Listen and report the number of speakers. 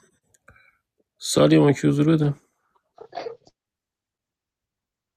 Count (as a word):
one